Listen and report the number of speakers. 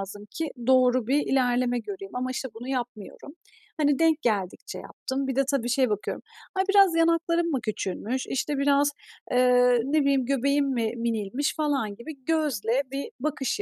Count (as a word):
one